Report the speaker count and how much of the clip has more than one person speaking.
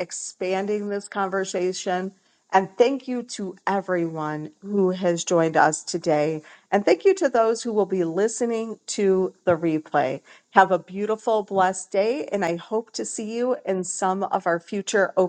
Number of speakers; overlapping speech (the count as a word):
one, no overlap